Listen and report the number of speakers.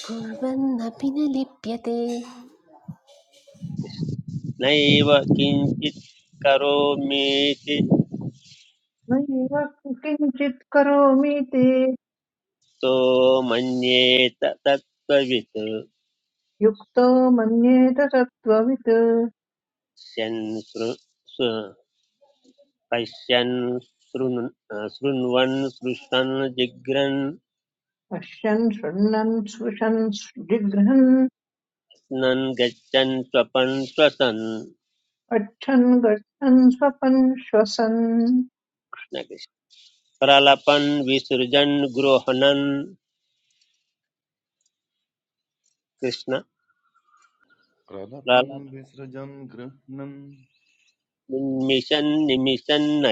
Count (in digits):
4